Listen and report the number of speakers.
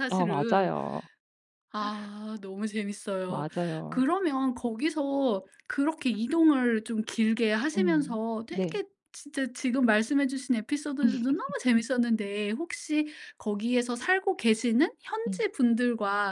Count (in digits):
2